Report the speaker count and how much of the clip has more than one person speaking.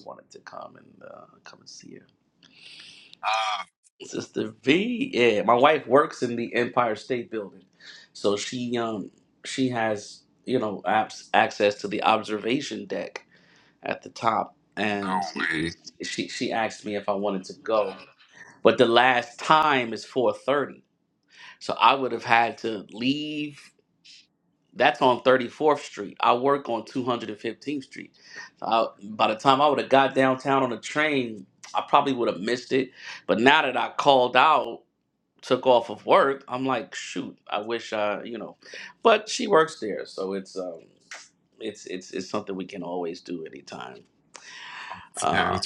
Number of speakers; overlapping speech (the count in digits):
2, about 1%